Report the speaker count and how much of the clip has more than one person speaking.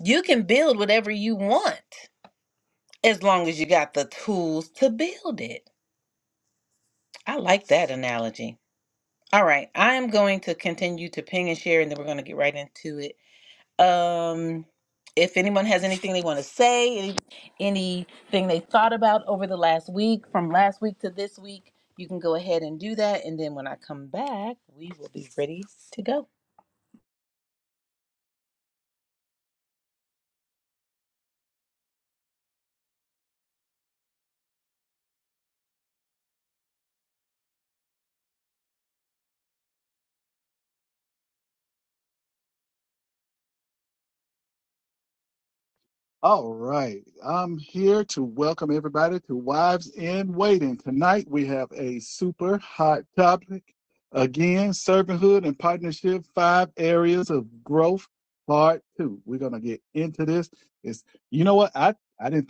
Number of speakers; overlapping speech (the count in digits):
2, no overlap